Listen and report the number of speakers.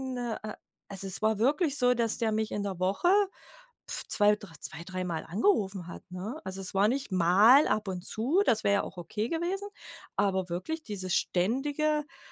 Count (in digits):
1